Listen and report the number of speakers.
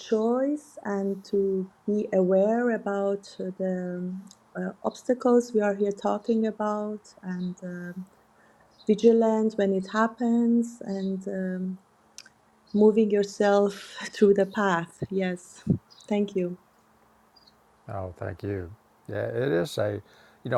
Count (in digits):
2